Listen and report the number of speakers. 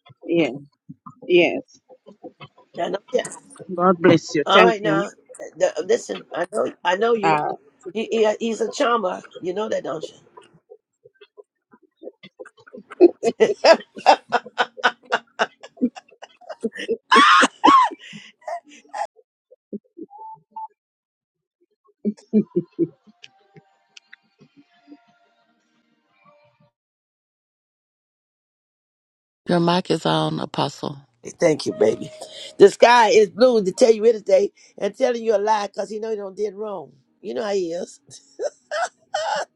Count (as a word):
three